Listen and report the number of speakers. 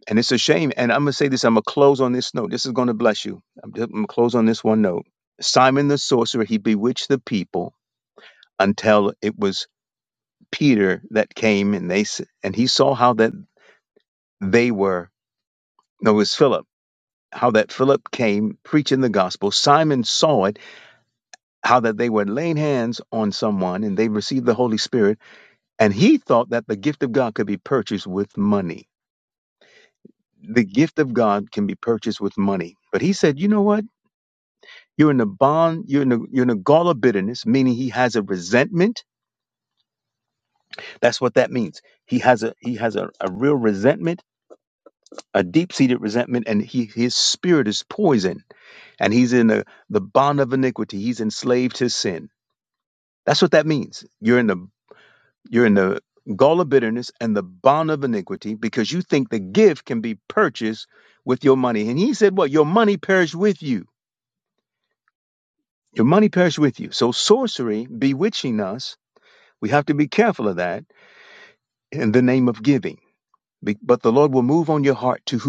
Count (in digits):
1